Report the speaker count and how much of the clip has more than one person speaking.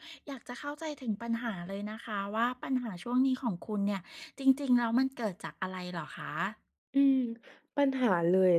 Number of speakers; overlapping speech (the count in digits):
2, no overlap